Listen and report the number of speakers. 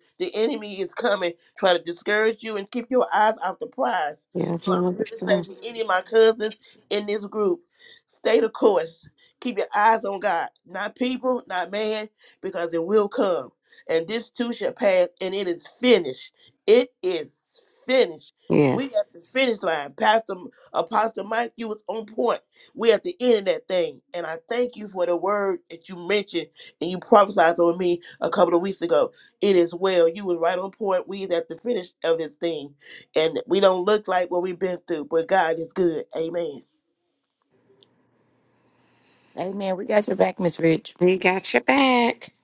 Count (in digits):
3